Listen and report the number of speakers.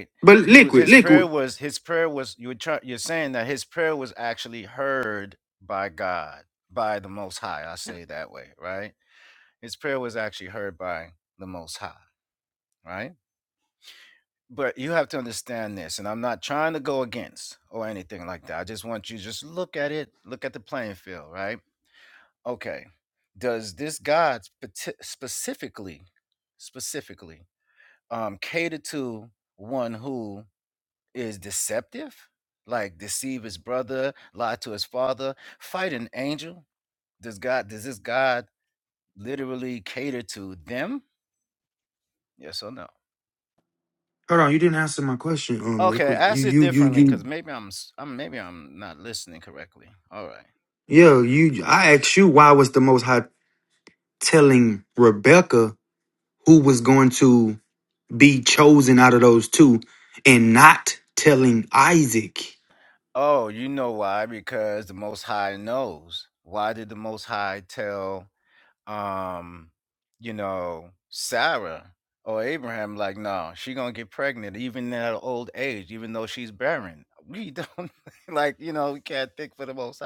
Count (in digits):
2